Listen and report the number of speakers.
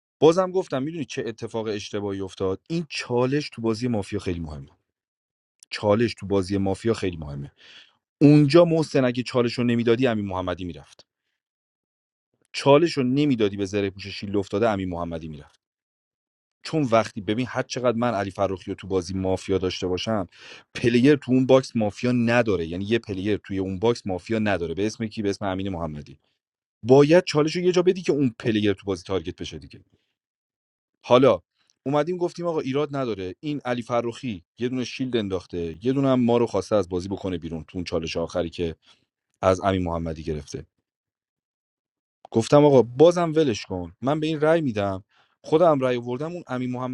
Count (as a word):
one